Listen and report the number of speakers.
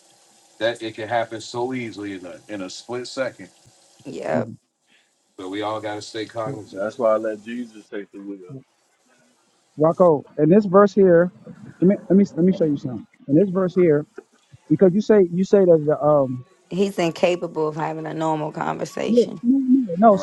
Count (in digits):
4